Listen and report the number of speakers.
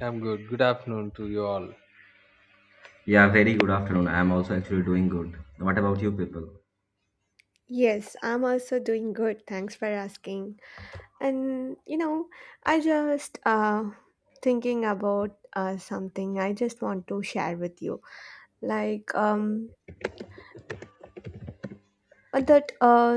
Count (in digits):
3